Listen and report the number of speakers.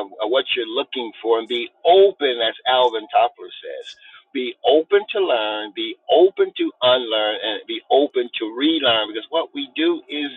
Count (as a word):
one